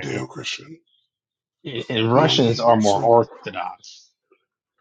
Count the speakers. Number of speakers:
2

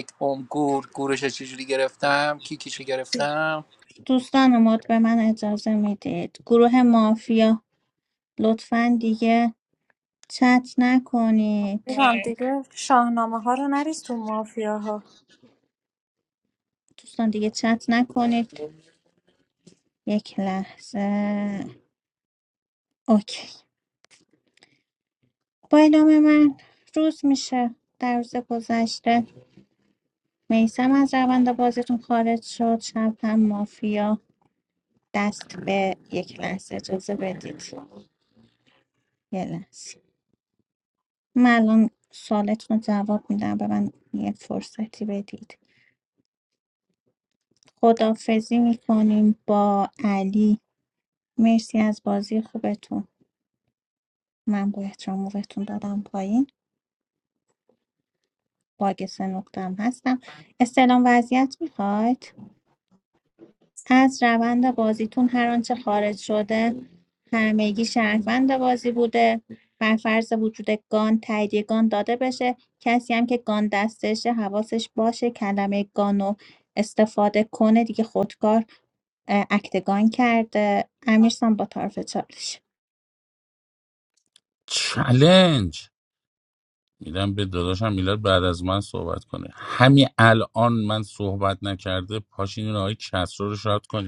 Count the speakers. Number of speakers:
4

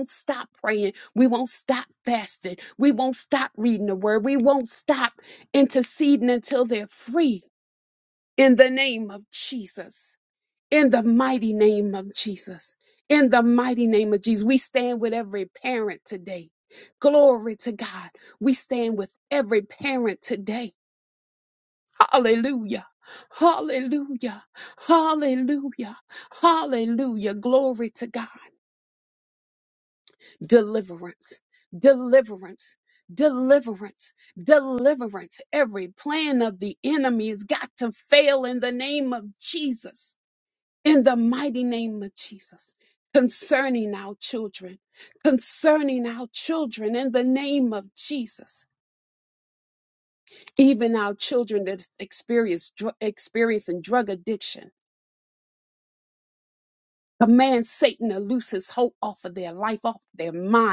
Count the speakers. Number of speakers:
1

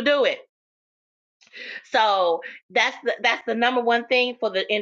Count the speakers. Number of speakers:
1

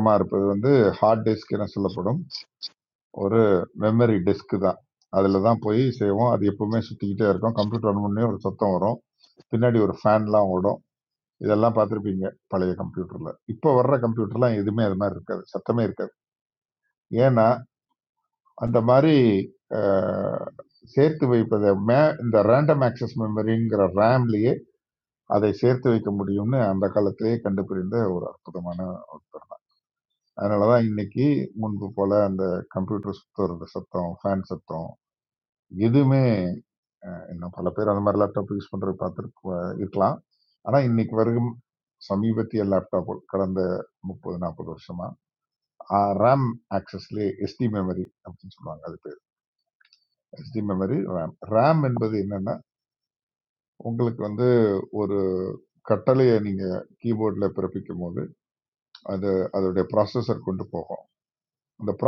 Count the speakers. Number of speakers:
1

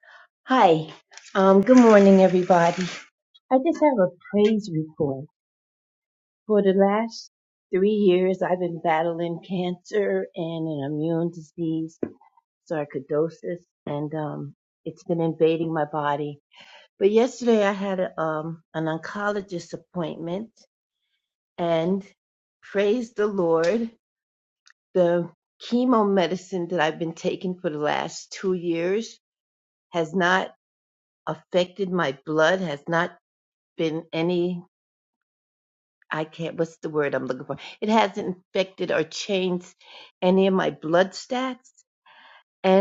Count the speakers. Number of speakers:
1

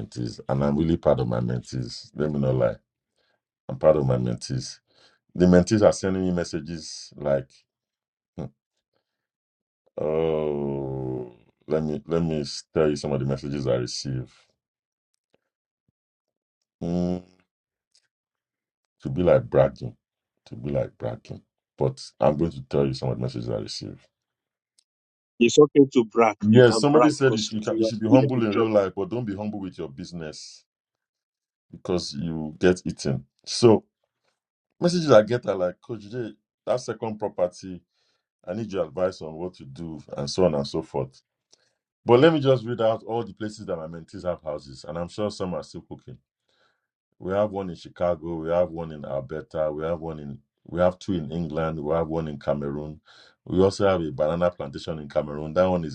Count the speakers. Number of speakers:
2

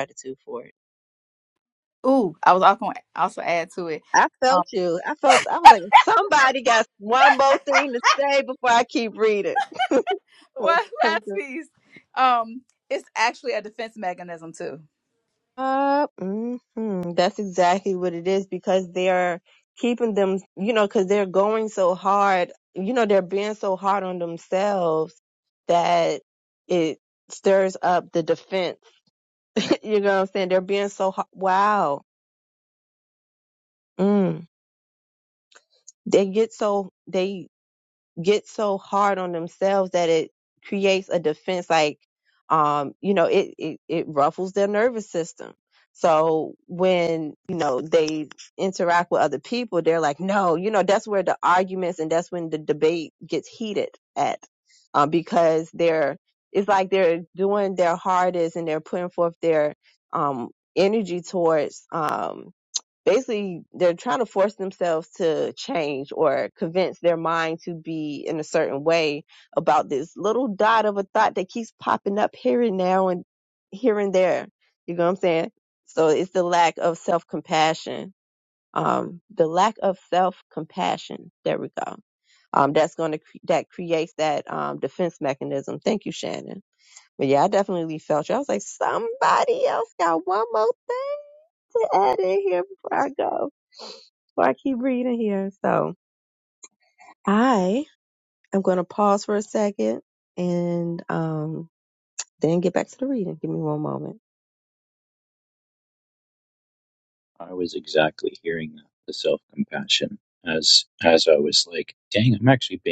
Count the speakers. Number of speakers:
3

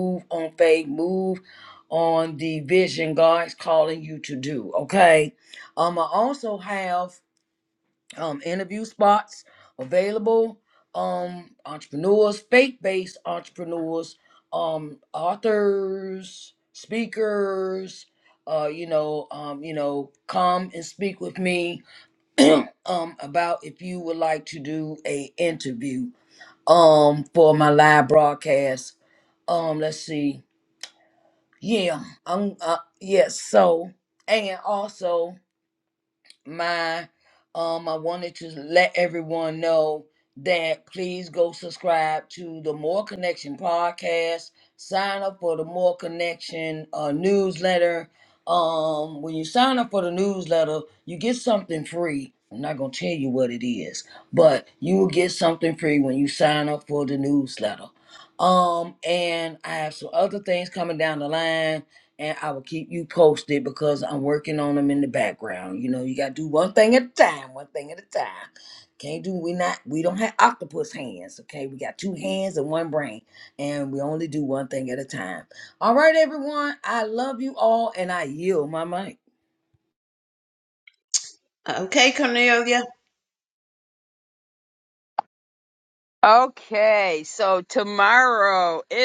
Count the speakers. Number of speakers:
3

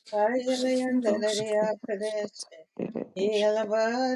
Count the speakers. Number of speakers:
2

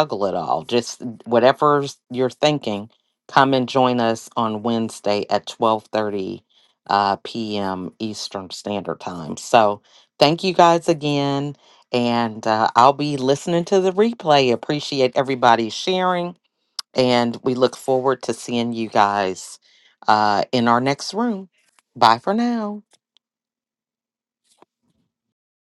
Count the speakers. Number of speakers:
1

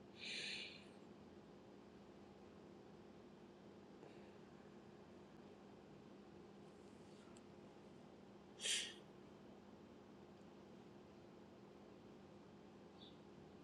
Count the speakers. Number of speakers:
0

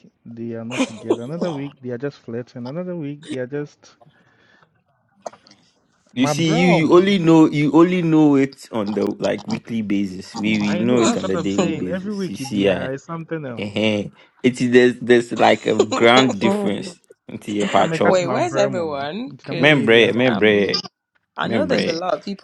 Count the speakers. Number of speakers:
3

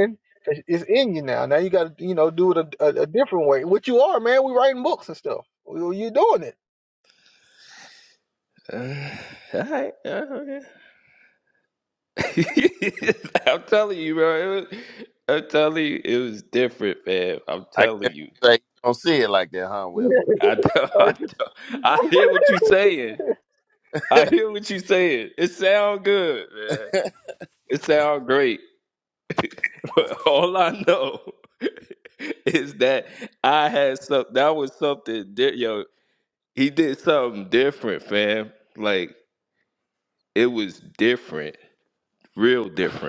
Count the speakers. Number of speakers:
3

